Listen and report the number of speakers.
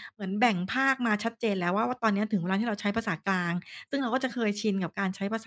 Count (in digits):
1